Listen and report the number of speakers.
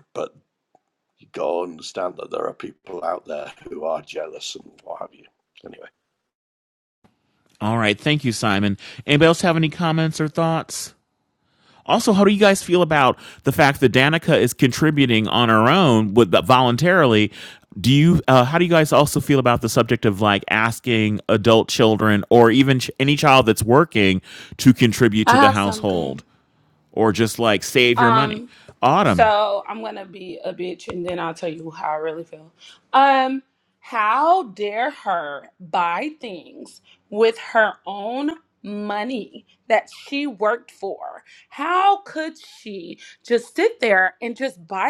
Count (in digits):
3